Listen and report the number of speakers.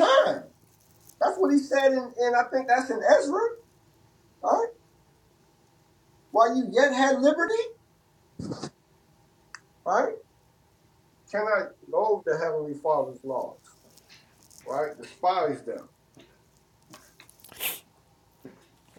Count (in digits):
1